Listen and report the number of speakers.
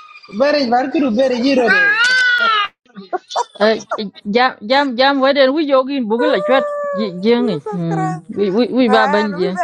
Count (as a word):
three